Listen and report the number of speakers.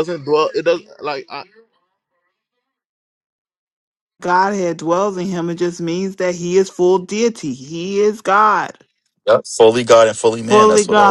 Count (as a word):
three